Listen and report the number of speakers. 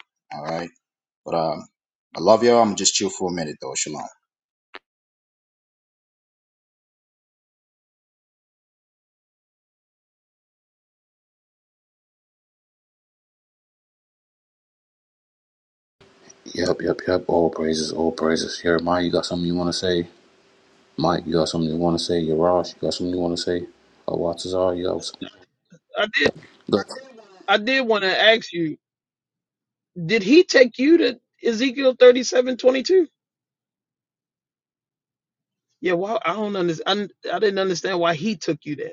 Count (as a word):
three